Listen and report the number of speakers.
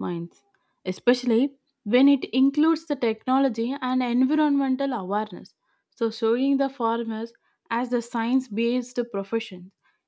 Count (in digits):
1